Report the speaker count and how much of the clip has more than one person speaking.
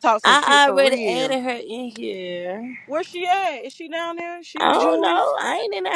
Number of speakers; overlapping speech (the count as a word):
two, about 30%